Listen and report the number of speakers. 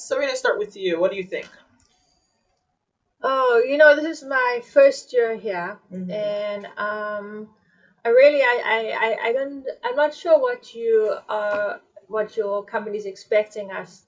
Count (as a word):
two